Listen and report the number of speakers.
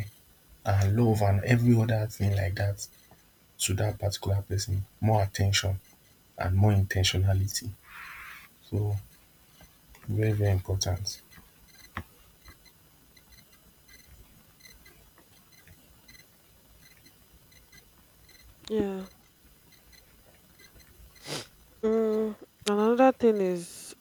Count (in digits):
2